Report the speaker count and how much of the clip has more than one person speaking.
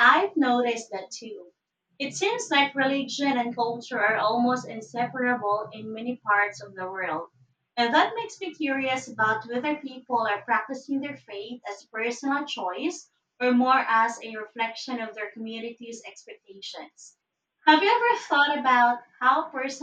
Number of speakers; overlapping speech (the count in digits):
1, no overlap